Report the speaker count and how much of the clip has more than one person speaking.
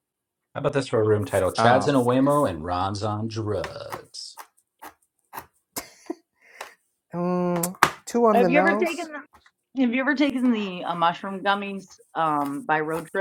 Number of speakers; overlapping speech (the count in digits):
3, about 7%